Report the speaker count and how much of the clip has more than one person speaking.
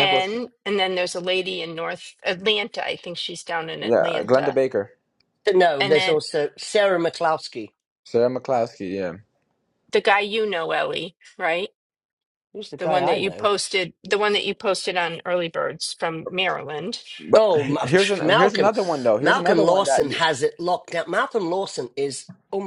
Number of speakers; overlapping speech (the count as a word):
three, about 20%